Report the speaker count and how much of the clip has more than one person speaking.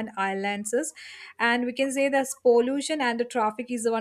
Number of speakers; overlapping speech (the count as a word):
one, no overlap